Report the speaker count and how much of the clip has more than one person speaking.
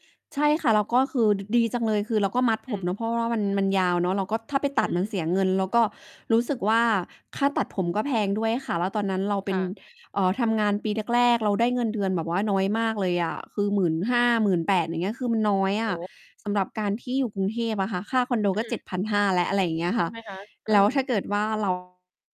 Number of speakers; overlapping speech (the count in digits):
2, about 5%